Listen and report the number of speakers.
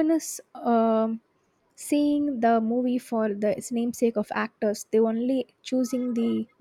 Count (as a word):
one